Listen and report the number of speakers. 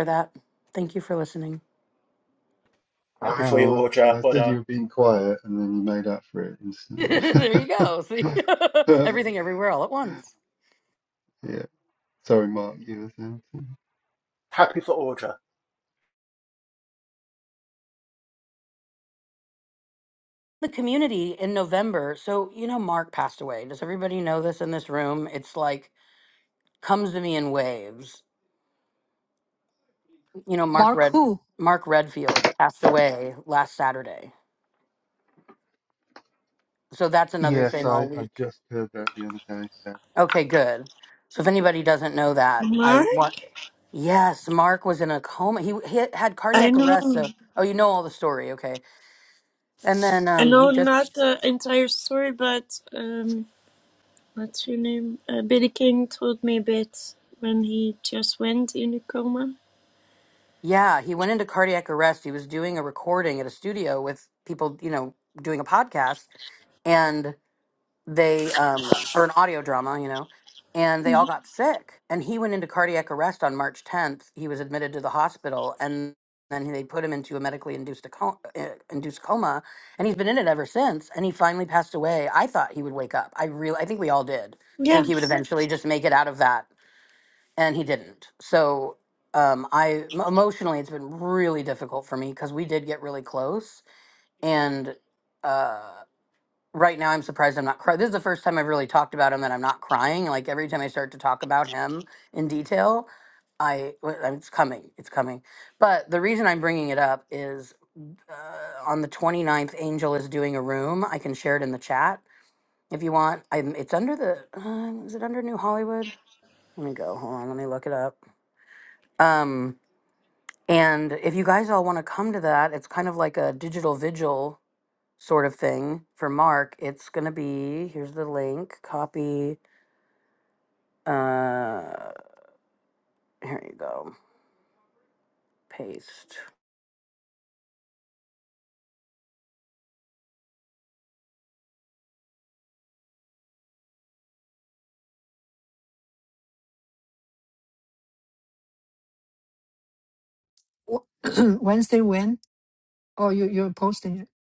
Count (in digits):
5